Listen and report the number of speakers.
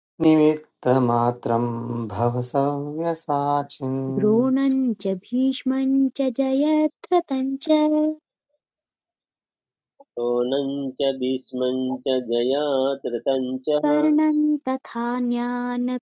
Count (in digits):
3